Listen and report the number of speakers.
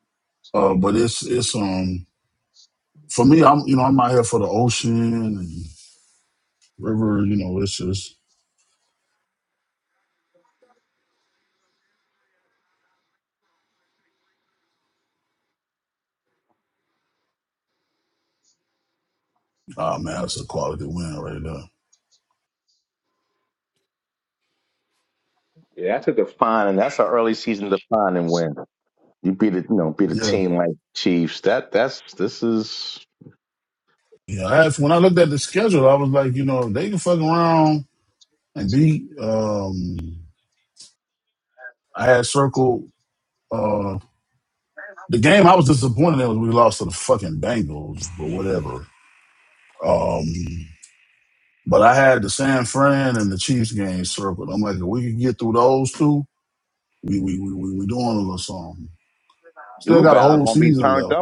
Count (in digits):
2